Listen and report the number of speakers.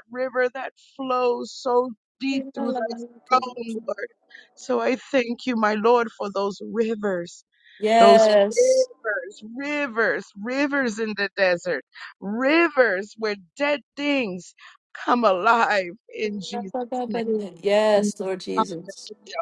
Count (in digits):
2